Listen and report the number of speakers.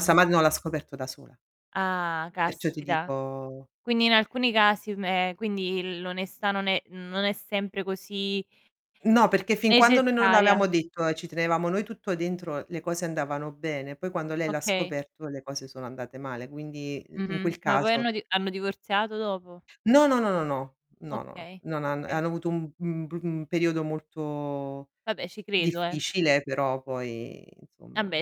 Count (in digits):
2